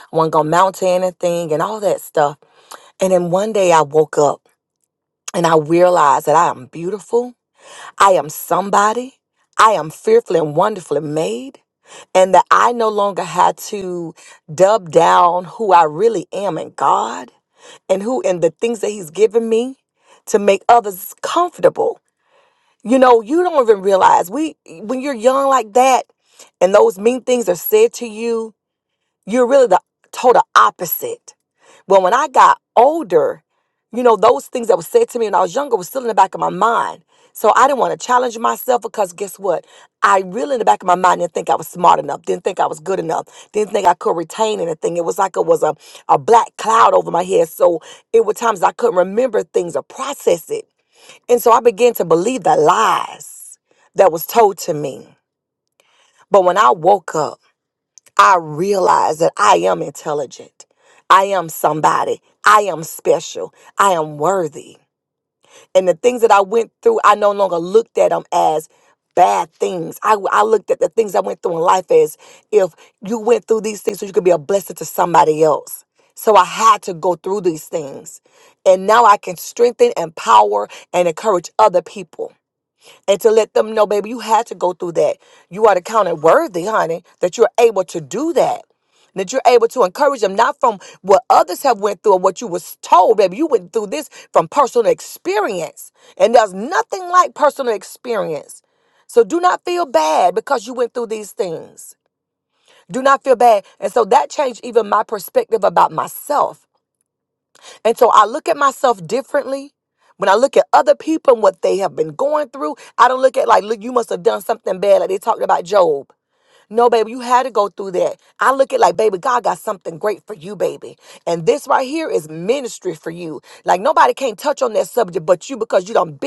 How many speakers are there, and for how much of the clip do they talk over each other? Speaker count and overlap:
1, no overlap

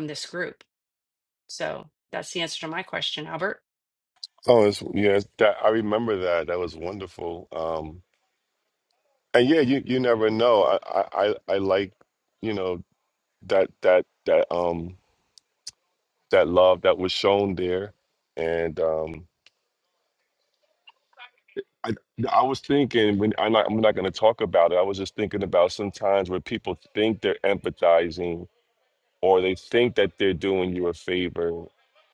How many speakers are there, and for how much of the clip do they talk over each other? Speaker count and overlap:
2, no overlap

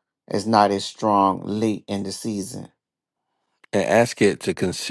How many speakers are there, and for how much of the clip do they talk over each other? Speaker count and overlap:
2, no overlap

